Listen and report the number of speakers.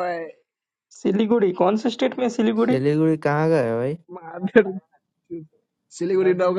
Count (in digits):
3